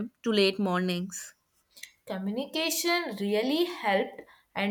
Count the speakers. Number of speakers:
2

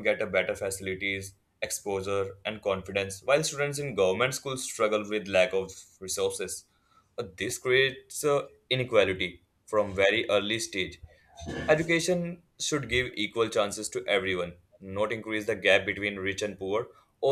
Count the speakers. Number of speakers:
1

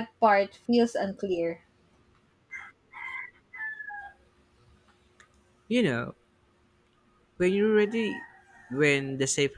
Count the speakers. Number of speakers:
2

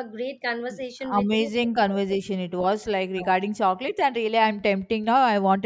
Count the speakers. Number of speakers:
2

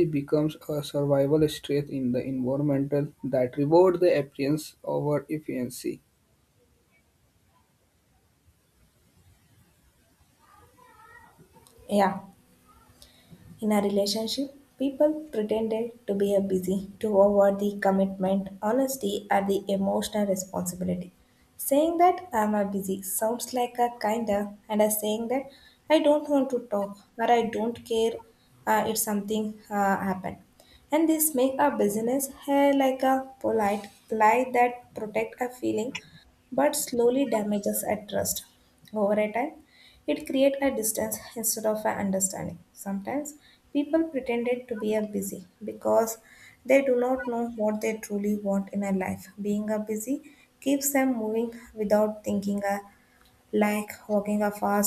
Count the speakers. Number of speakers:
2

